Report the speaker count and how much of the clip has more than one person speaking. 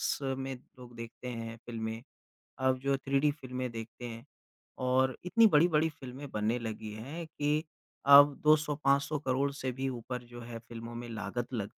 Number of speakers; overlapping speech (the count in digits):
1, no overlap